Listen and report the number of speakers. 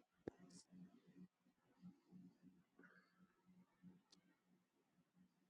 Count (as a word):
zero